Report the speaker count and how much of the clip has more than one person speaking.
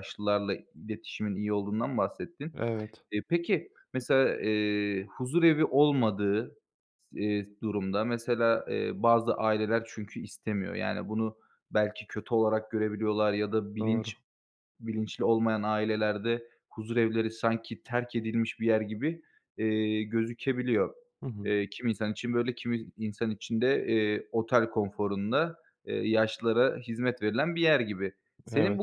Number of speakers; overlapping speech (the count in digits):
2, about 2%